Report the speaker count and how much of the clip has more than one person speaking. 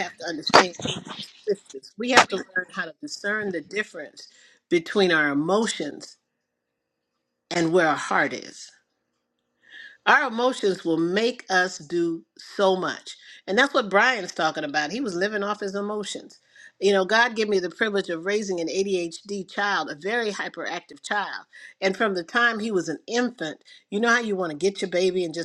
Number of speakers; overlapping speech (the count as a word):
one, no overlap